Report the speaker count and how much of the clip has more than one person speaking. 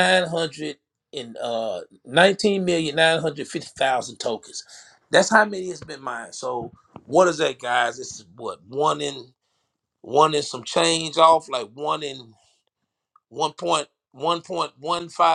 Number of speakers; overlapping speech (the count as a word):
one, no overlap